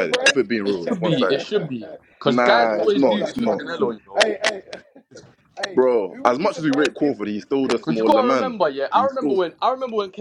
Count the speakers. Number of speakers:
three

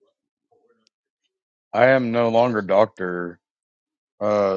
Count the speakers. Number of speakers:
one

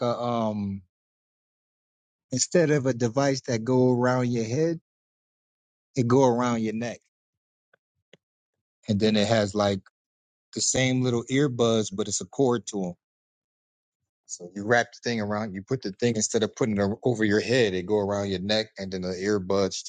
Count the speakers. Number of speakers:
one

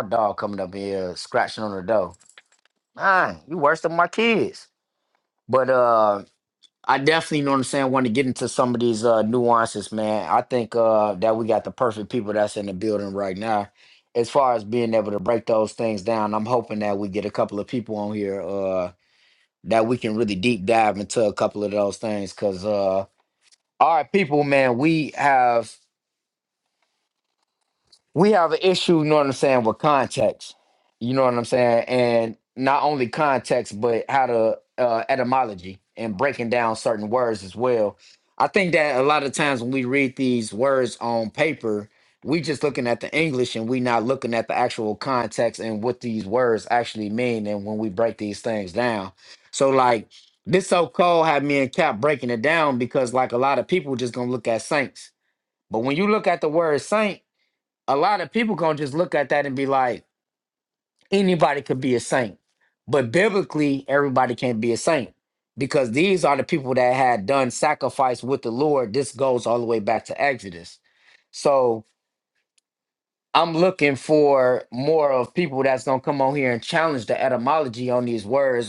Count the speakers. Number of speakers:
one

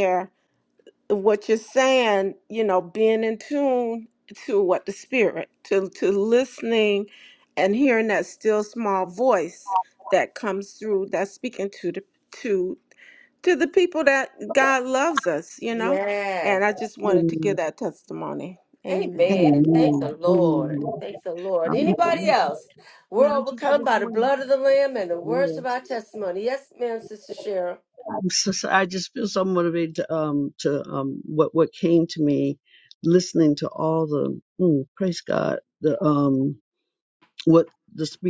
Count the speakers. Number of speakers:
three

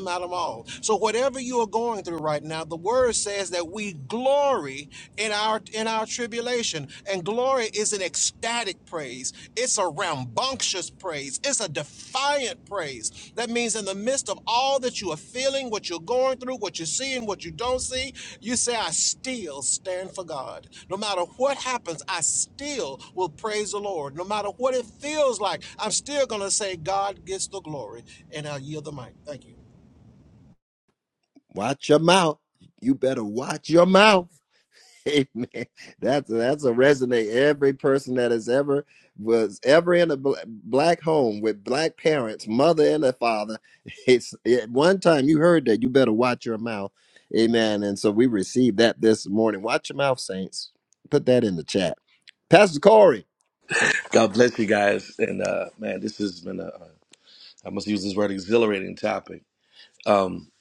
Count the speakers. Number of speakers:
three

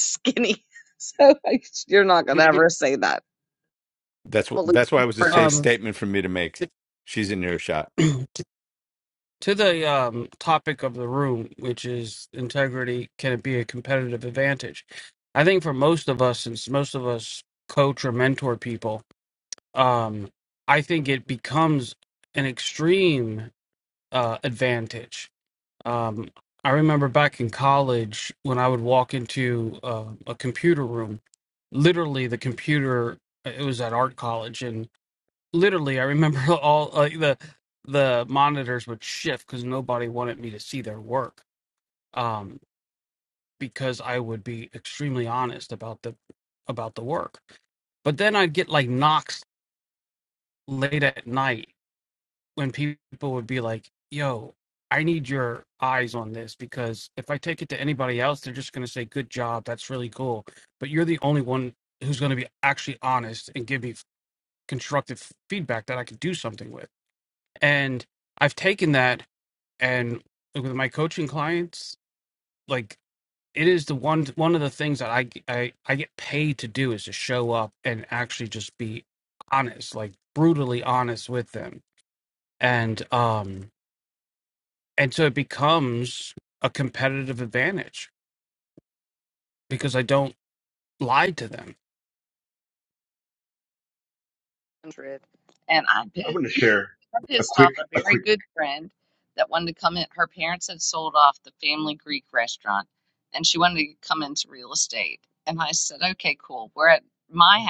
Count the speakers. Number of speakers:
four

